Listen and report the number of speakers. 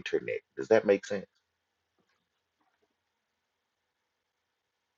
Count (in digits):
1